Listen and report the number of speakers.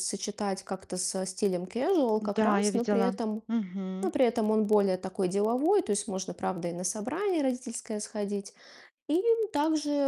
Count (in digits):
2